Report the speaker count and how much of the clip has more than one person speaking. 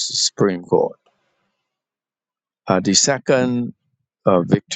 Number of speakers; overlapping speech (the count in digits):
1, no overlap